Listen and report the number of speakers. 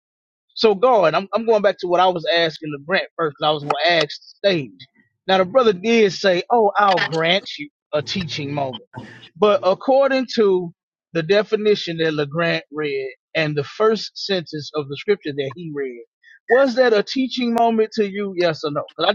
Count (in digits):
1